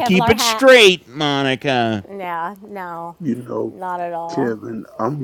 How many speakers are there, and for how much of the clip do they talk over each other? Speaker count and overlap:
three, about 18%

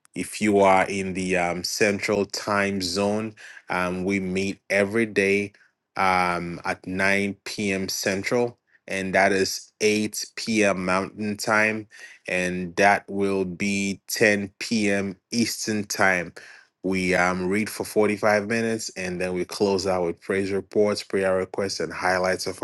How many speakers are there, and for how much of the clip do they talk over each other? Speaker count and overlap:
one, no overlap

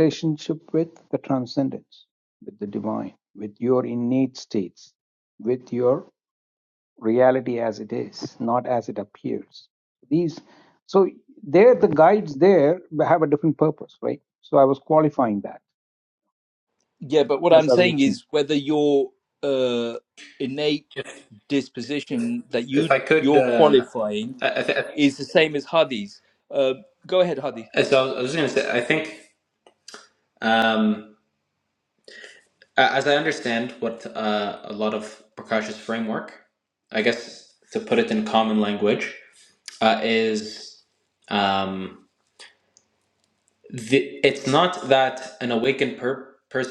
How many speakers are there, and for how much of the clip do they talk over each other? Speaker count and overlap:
three, about 4%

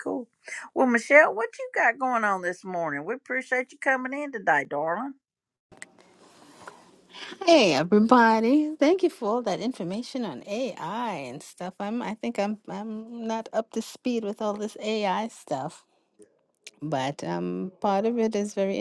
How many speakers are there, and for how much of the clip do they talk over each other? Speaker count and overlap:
two, no overlap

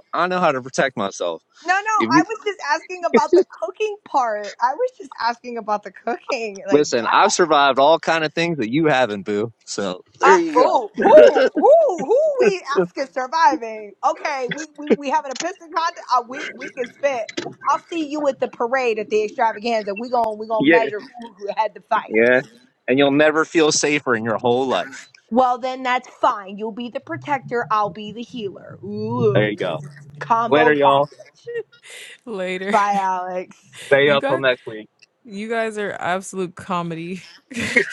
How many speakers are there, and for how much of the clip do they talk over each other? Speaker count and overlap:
three, about 7%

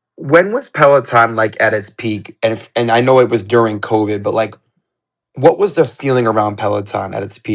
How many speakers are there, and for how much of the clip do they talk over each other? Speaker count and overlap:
one, no overlap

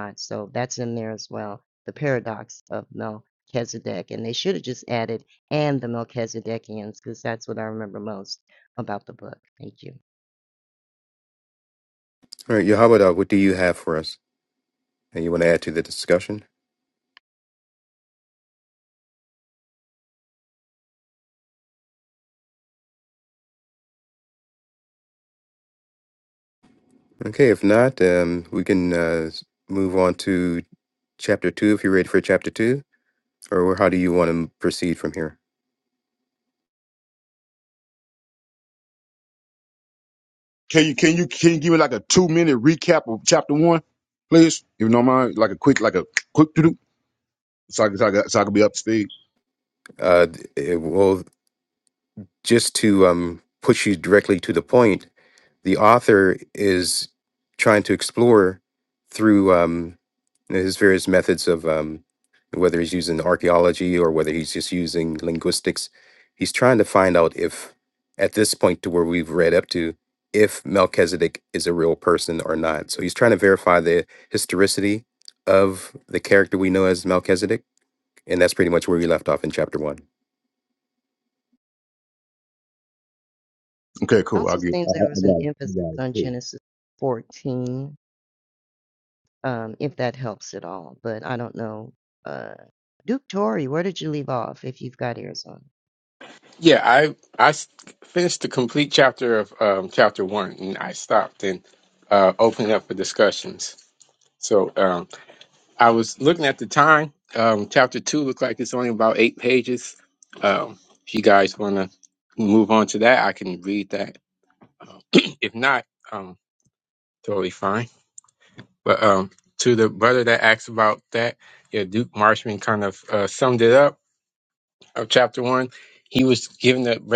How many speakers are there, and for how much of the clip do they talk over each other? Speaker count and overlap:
four, about 2%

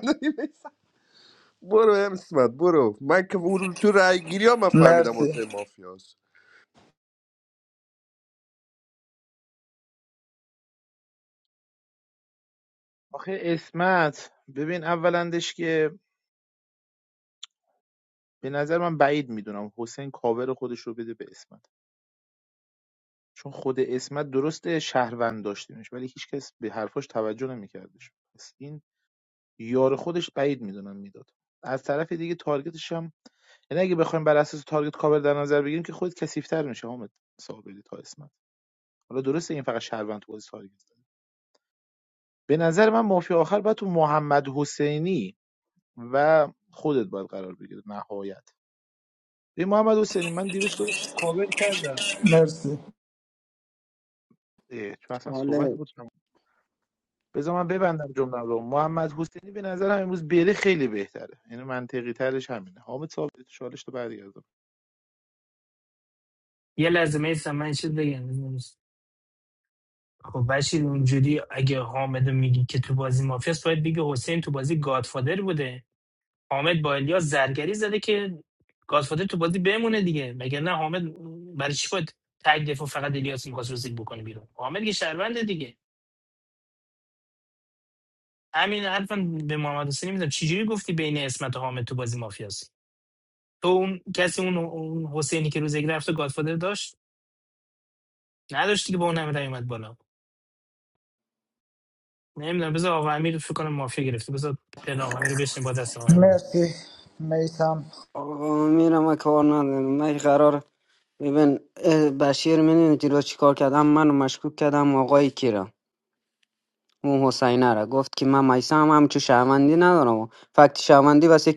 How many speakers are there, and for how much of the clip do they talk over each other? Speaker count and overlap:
five, about 1%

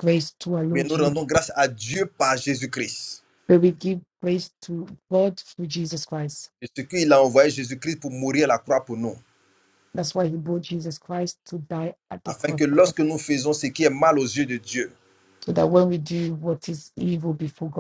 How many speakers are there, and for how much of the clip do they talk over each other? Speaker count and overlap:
two, about 5%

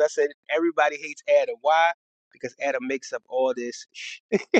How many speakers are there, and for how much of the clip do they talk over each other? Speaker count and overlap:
one, no overlap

